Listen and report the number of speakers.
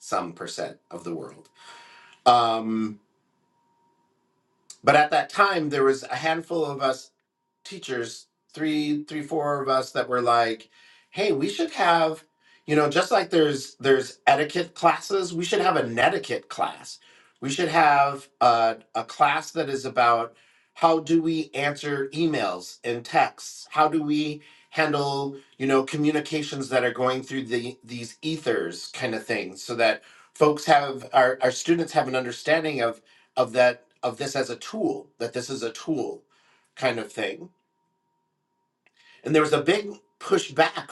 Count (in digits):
1